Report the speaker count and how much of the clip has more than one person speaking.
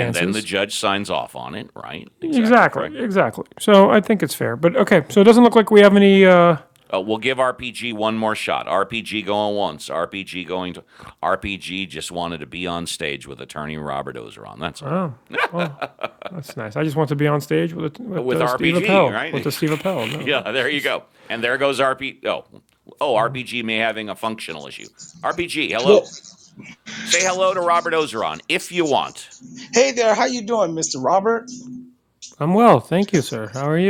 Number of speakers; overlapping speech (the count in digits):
3, about 9%